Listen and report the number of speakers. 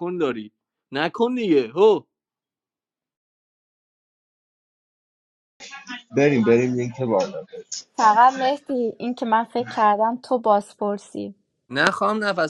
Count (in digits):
3